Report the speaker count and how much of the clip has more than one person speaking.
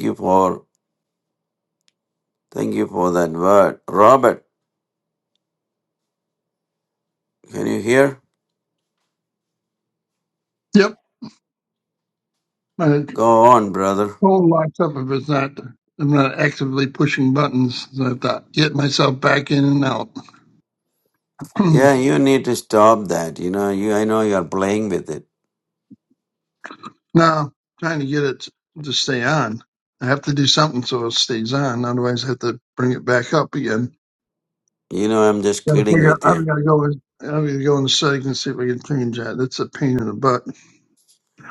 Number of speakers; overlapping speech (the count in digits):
2, about 2%